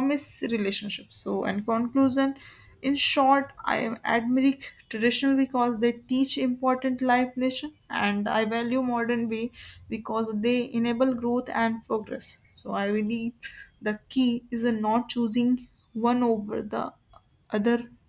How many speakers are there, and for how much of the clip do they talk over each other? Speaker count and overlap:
1, no overlap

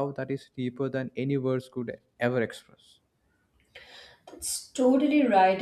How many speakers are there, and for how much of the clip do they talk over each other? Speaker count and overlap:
2, no overlap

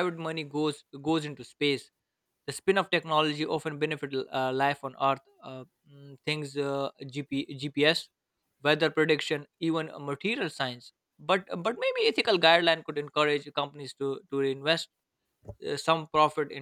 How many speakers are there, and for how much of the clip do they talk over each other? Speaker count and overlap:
1, no overlap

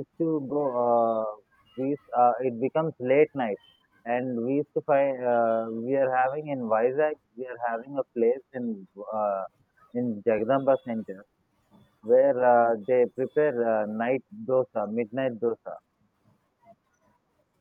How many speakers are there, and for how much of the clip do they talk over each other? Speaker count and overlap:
1, no overlap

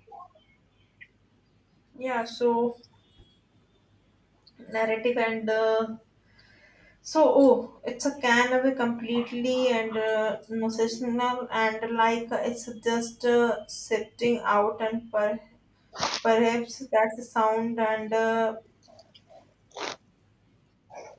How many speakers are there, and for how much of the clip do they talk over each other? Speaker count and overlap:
1, no overlap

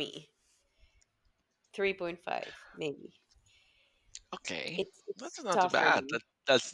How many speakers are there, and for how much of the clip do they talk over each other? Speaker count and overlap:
2, about 9%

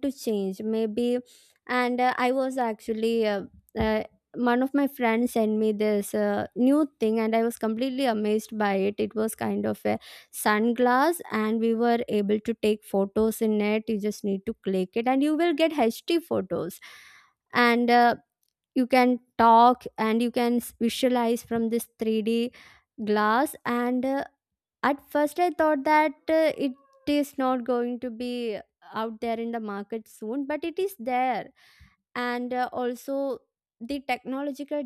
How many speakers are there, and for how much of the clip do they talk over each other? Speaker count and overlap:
1, no overlap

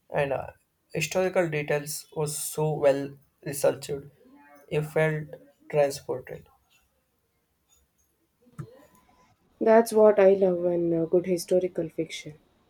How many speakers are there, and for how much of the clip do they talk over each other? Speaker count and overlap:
2, no overlap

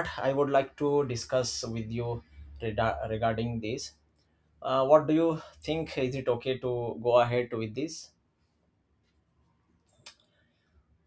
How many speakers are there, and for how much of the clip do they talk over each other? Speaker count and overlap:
1, no overlap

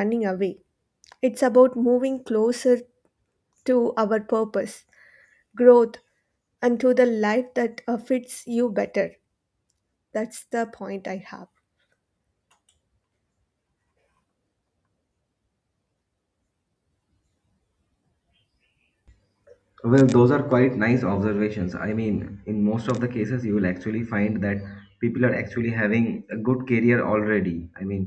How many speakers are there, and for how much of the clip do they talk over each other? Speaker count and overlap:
2, no overlap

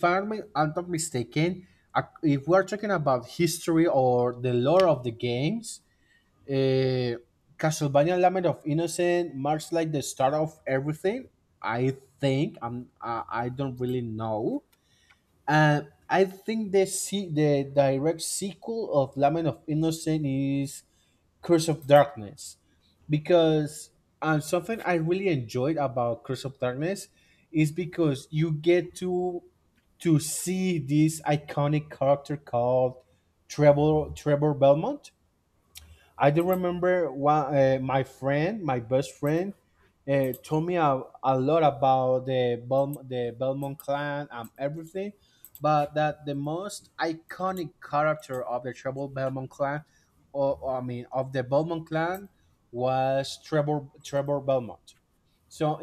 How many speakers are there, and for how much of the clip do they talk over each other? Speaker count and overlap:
1, no overlap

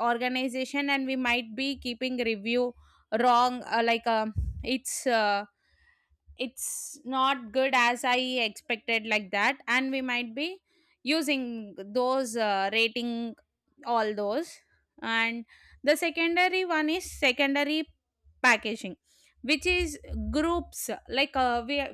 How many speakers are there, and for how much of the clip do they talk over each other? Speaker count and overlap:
1, no overlap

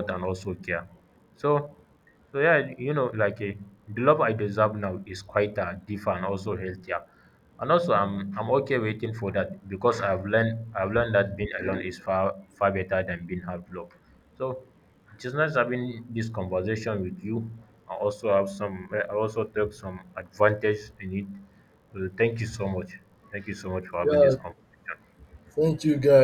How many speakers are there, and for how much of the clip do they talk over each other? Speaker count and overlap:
2, about 1%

